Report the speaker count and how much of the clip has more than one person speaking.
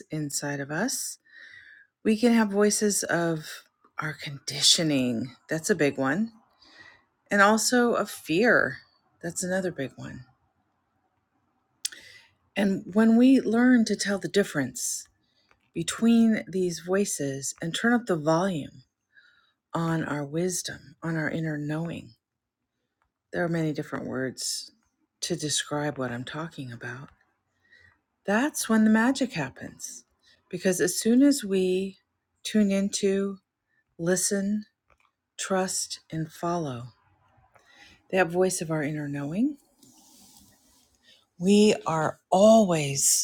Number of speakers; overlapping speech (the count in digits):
1, no overlap